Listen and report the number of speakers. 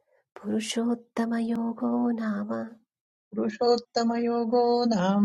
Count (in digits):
2